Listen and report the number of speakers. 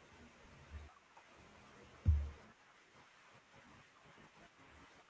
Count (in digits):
0